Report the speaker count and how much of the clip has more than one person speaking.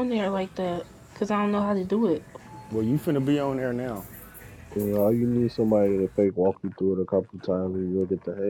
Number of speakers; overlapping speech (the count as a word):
three, no overlap